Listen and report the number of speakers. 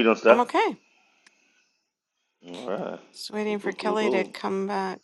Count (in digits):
2